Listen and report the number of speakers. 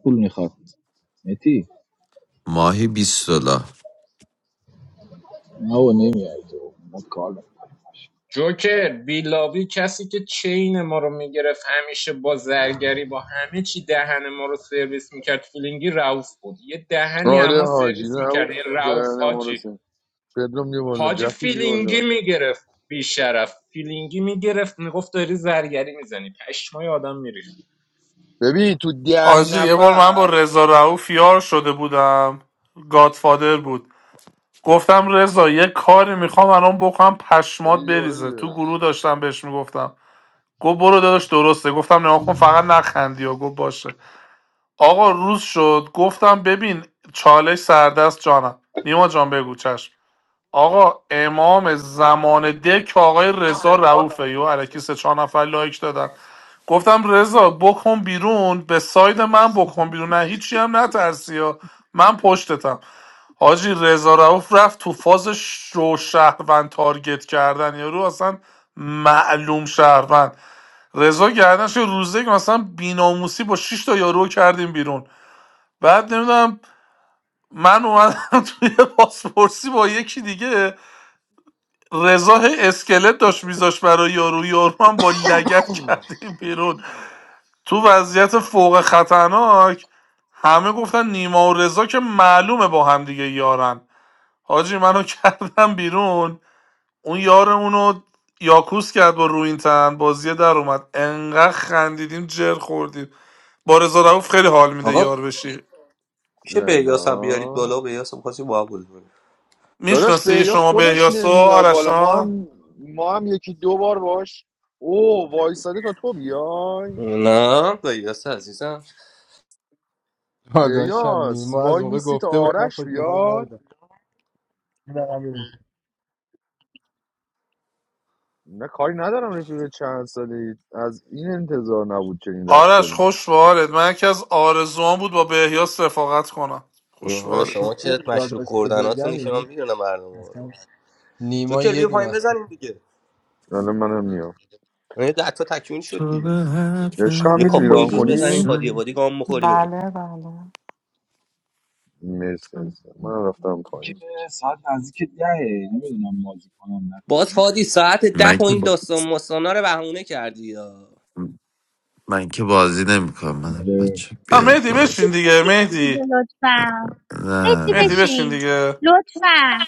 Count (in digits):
9